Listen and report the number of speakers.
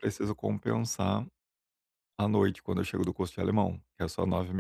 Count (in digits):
1